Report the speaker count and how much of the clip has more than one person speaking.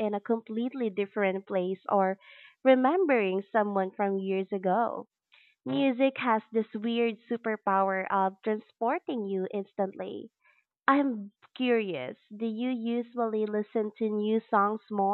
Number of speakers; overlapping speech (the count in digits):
1, no overlap